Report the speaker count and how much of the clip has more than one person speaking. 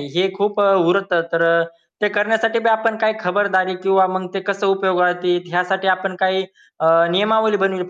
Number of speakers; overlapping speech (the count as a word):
one, no overlap